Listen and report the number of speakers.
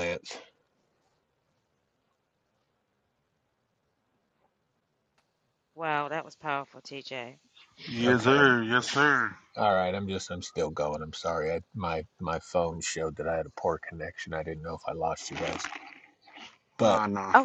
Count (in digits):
3